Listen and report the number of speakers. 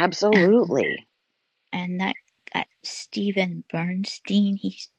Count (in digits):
2